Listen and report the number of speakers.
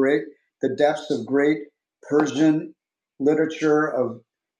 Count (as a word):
one